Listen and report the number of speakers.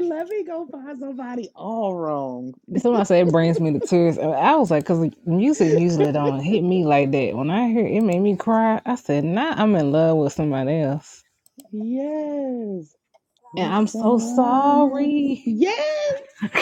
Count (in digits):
2